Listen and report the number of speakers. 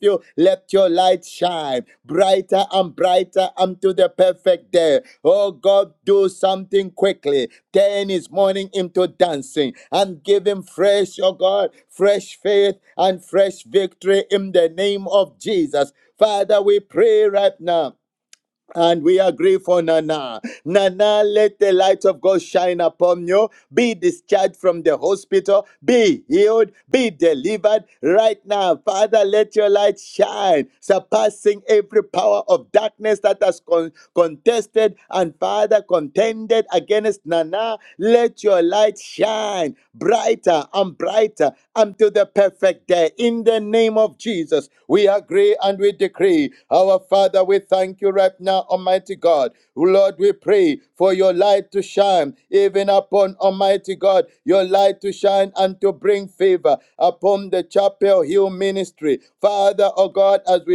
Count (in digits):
1